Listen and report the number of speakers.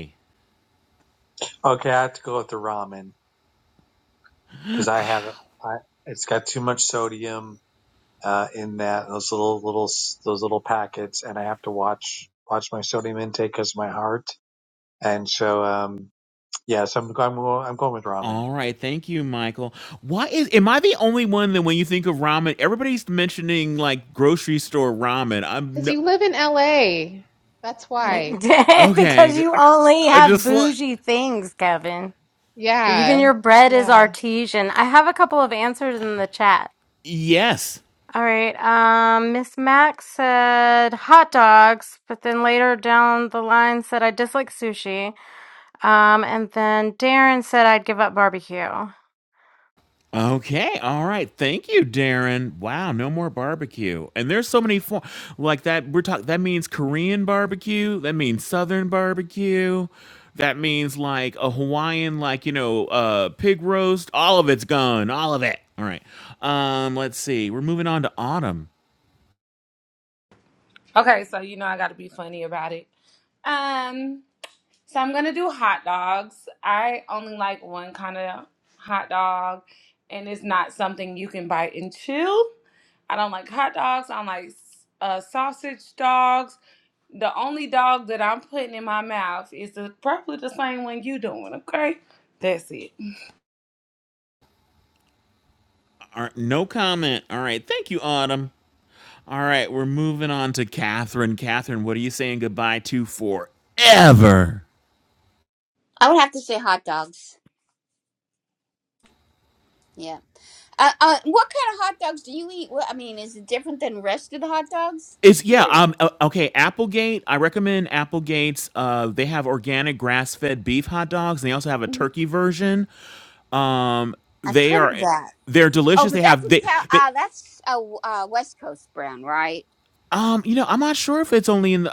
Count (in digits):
6